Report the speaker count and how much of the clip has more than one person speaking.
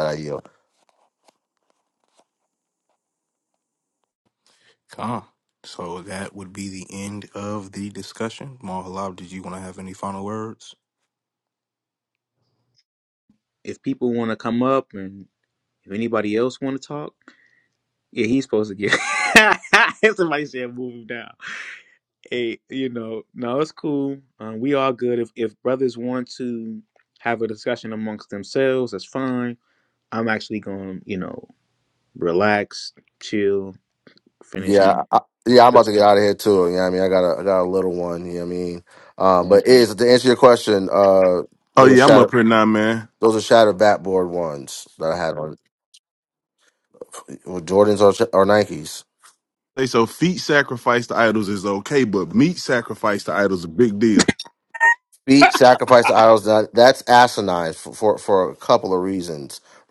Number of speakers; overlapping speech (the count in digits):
4, about 2%